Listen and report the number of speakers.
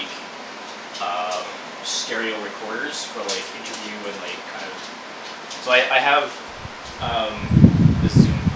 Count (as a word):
one